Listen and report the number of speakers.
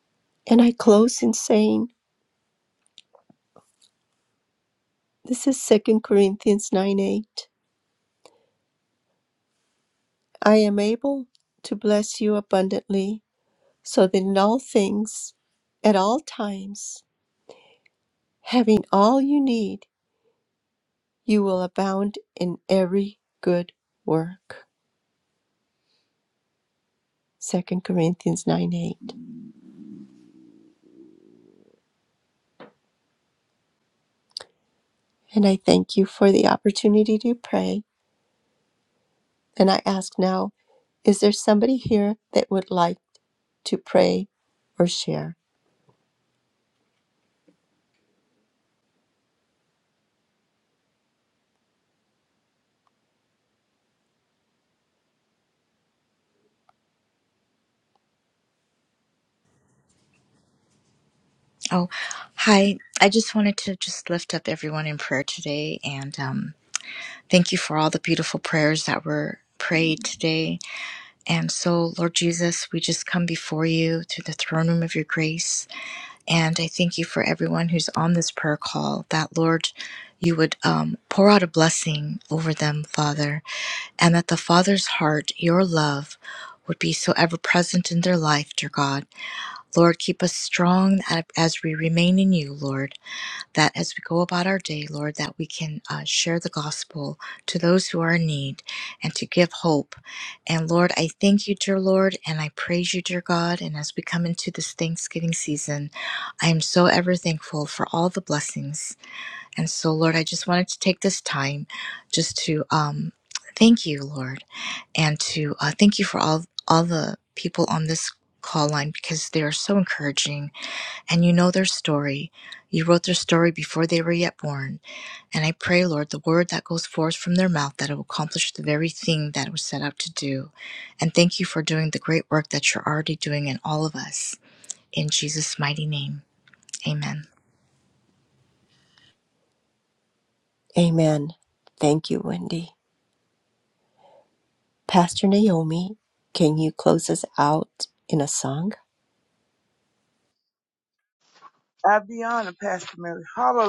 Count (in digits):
3